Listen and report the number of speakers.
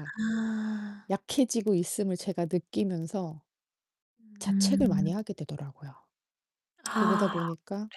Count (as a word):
two